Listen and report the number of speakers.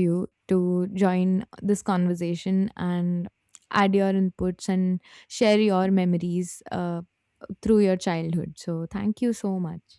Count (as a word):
one